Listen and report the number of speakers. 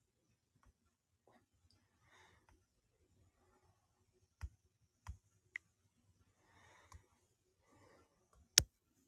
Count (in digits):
0